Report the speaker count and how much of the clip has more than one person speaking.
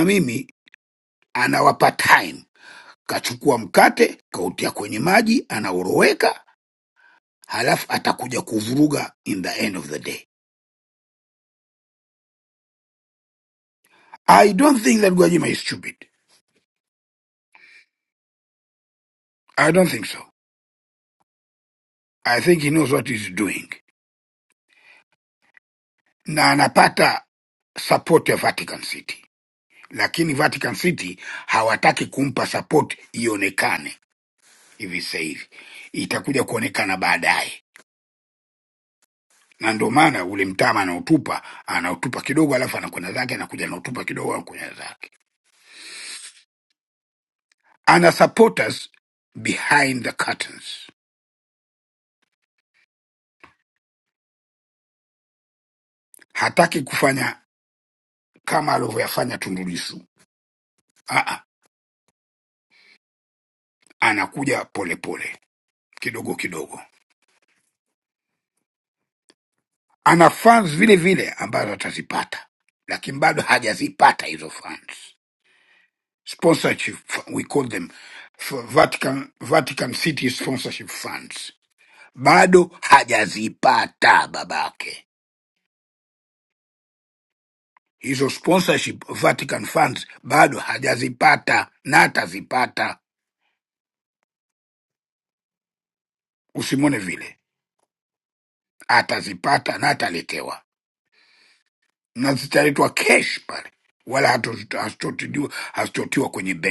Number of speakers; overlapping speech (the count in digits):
1, no overlap